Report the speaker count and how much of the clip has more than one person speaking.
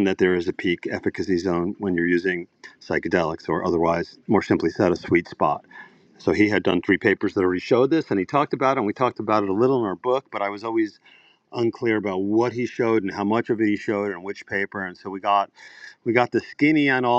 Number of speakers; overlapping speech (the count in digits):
1, no overlap